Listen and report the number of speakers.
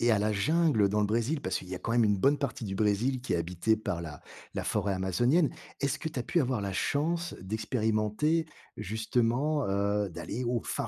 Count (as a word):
one